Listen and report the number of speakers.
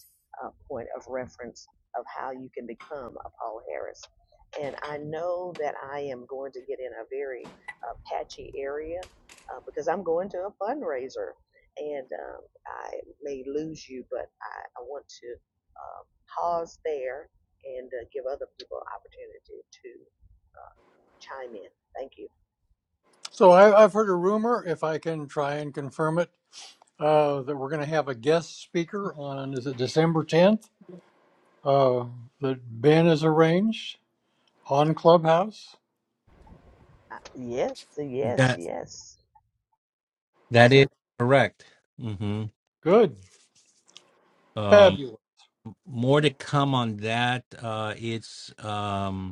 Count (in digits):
3